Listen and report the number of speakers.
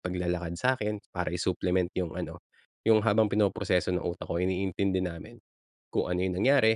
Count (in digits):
1